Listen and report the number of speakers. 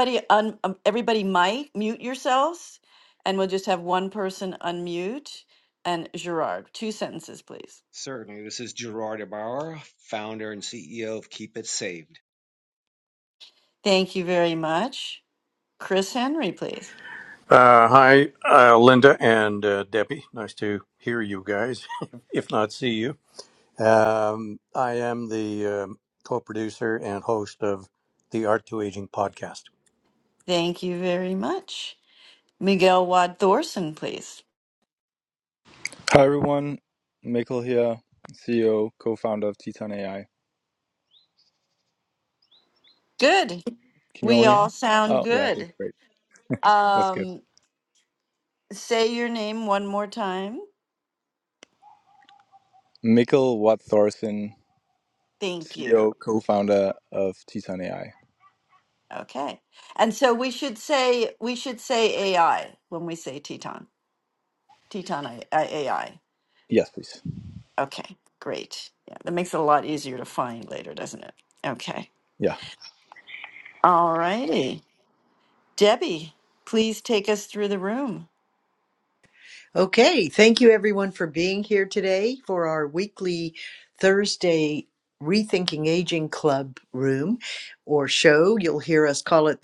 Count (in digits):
5